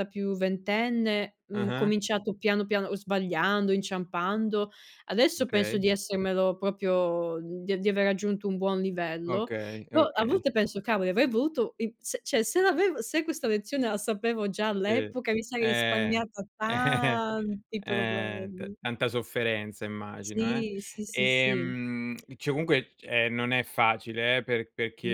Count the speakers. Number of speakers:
two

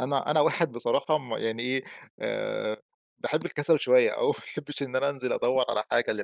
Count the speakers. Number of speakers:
one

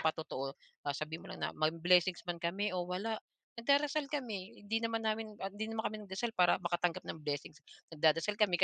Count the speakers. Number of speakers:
one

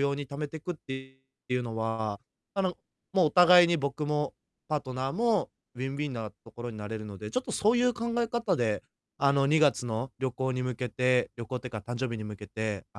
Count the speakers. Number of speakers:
one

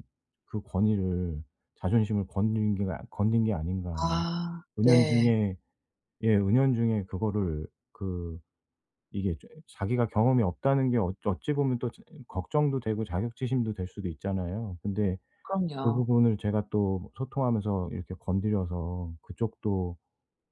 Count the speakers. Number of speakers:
two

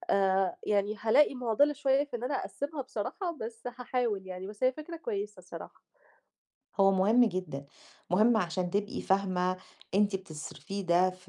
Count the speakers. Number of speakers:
two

